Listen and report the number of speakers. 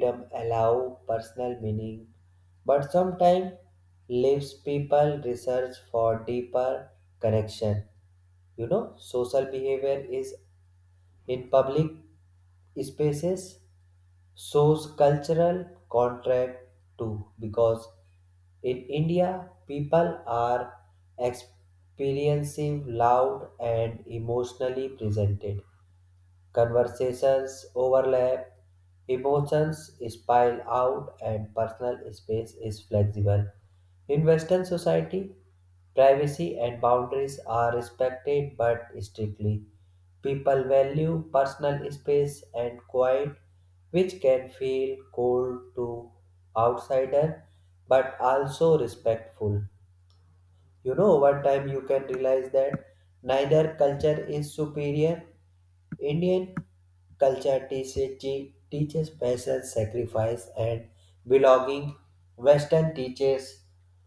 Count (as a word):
one